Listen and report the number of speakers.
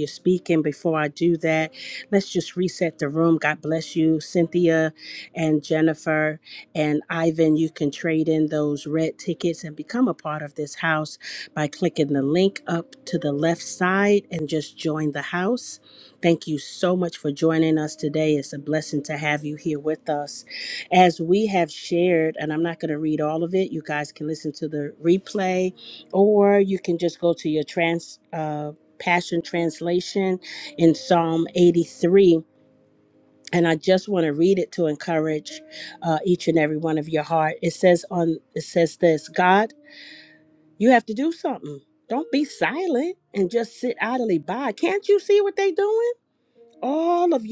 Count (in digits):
1